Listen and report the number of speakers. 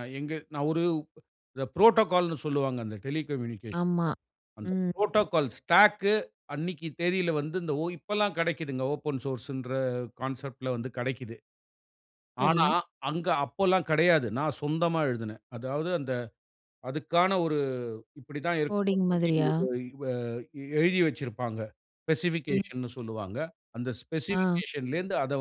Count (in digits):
2